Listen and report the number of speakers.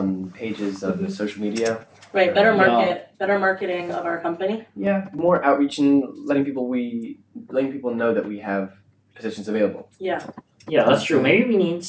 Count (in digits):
3